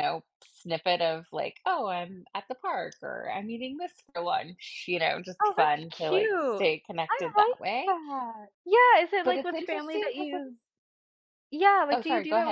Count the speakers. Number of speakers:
2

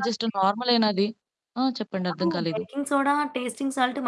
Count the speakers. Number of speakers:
2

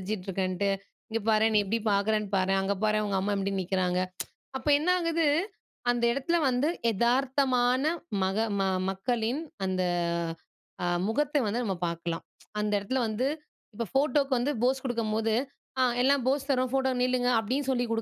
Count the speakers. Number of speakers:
1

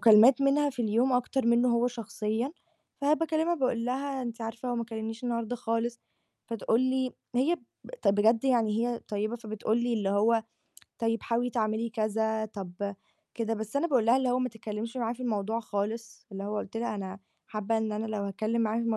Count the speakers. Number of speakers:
1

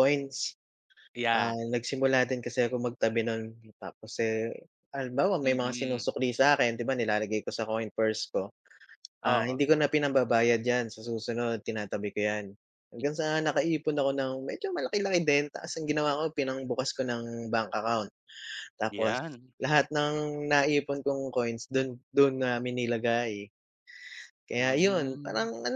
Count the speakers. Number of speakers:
2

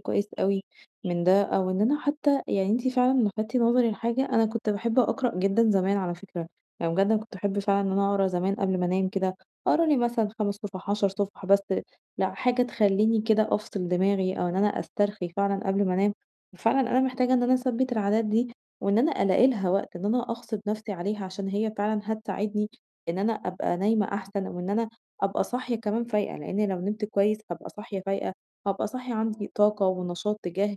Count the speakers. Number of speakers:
1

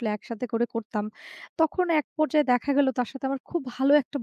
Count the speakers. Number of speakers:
1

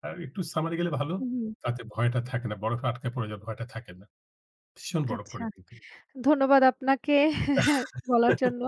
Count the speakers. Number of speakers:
2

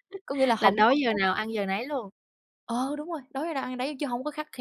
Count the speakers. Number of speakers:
2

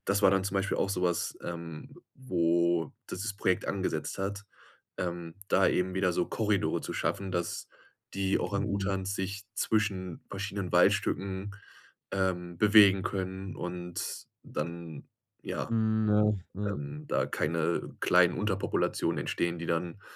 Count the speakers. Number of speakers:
2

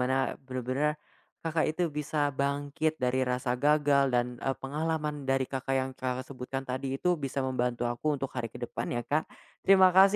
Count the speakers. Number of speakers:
1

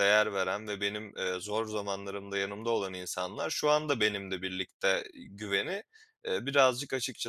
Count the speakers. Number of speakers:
1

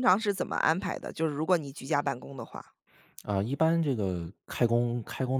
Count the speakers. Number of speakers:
2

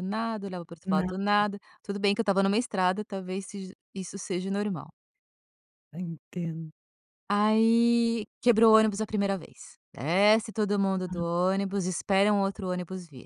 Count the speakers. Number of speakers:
2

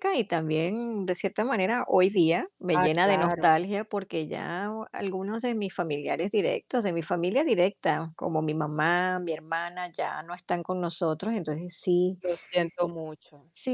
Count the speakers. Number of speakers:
2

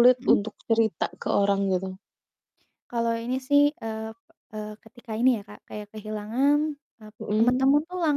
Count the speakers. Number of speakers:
2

